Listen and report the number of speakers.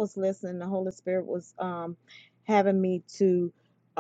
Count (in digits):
1